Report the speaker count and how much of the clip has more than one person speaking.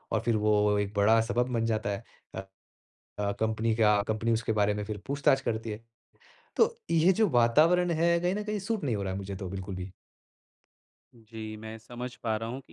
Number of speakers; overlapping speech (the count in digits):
2, no overlap